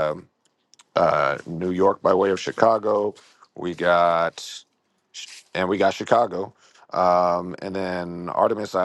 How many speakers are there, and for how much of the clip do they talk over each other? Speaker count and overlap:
one, no overlap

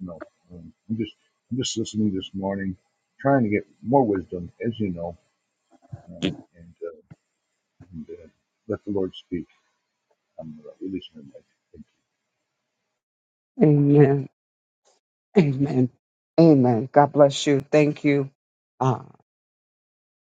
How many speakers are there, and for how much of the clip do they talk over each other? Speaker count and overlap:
two, no overlap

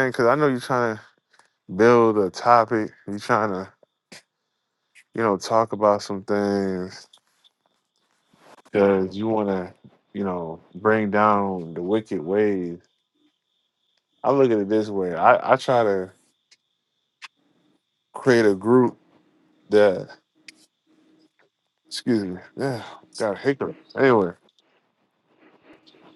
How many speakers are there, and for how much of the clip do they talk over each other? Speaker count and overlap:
one, no overlap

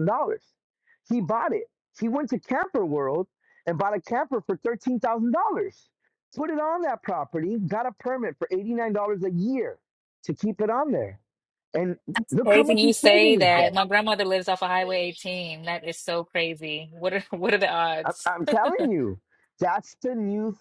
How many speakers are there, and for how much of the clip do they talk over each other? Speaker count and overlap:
two, about 7%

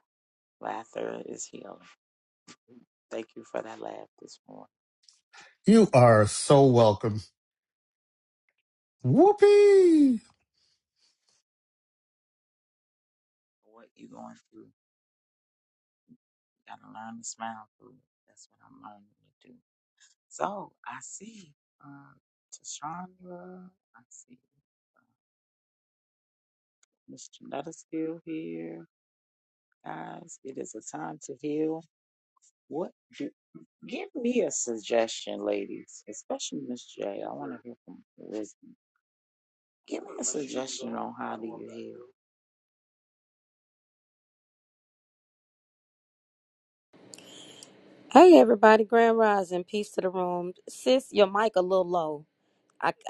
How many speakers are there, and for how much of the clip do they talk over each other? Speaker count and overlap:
three, no overlap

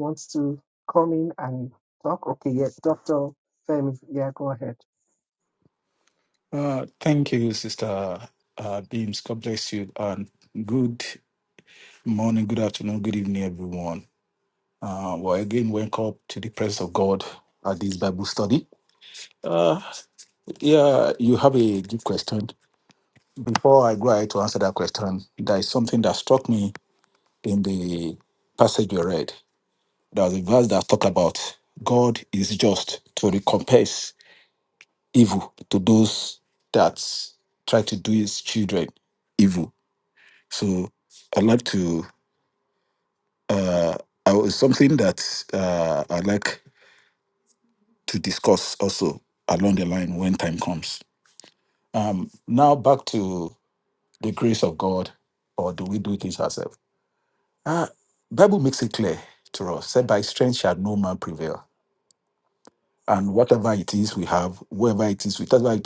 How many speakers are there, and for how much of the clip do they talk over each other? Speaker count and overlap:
two, no overlap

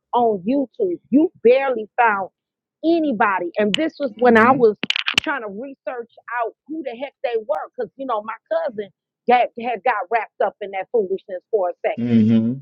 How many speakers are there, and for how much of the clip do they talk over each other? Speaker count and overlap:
two, about 4%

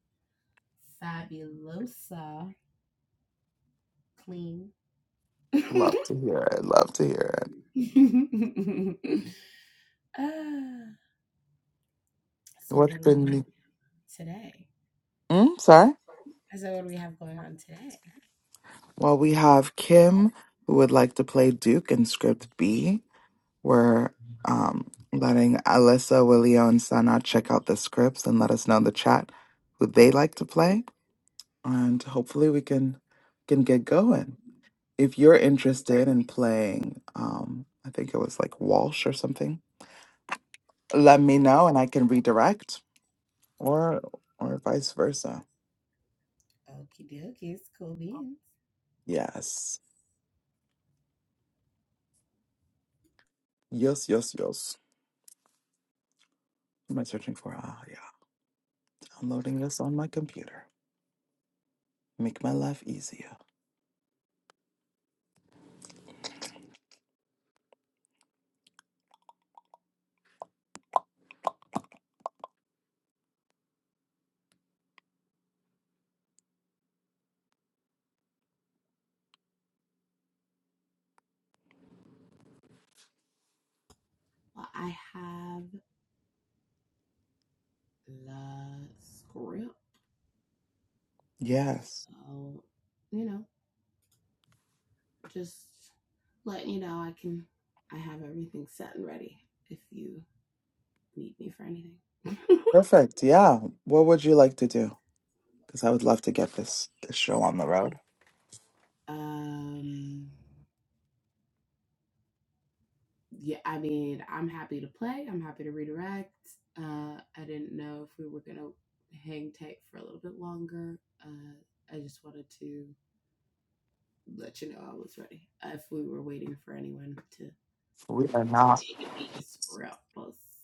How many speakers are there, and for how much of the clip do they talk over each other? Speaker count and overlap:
two, about 1%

